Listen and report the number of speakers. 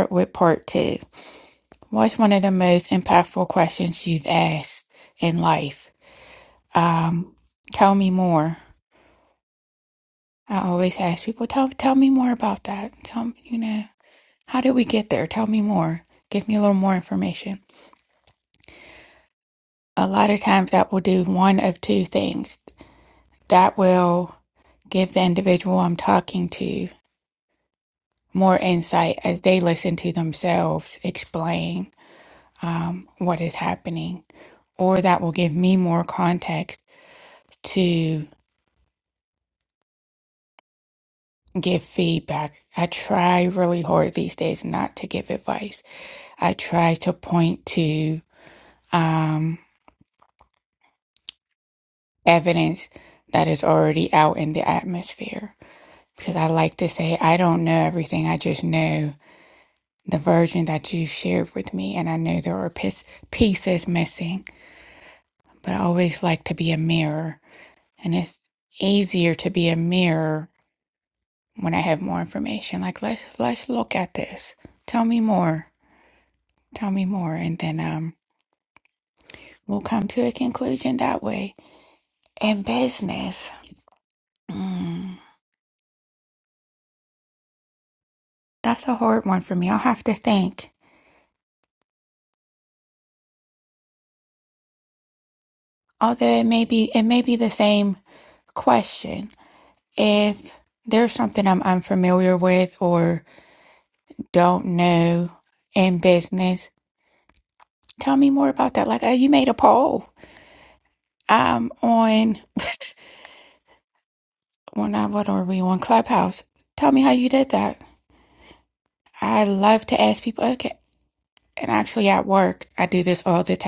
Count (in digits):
1